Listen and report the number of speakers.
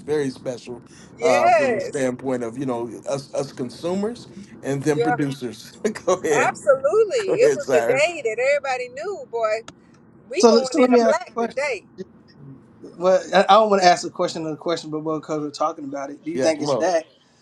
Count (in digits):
3